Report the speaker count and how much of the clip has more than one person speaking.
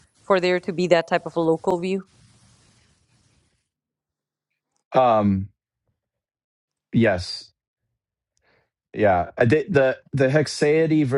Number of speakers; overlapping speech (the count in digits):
2, no overlap